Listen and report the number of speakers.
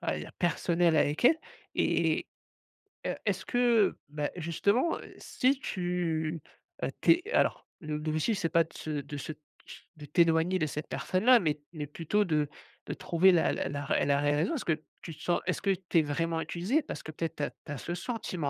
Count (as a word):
one